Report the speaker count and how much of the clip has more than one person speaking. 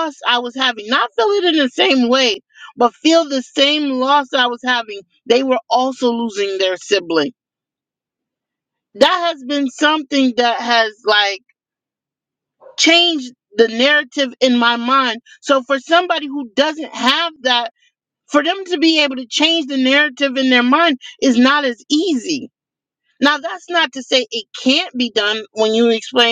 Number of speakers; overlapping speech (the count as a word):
one, no overlap